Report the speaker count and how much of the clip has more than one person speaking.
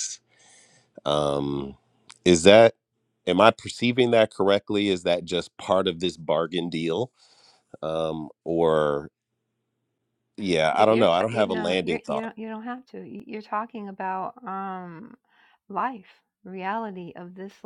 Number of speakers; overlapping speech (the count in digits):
2, about 9%